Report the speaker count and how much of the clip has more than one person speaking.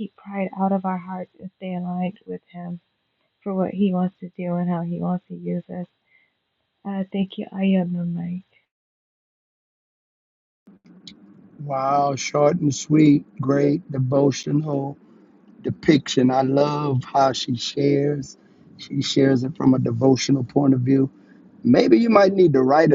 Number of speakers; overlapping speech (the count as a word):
two, no overlap